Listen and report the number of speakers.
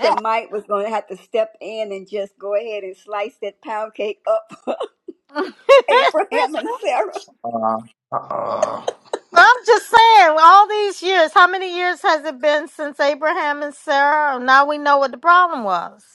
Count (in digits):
3